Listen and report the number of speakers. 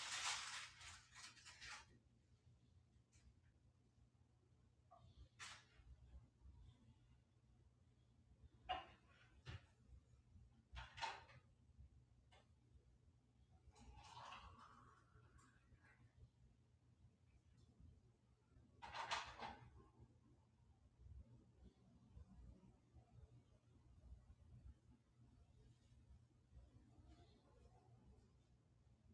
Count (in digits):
0